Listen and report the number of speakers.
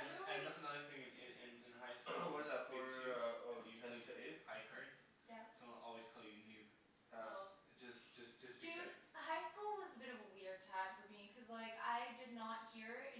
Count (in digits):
3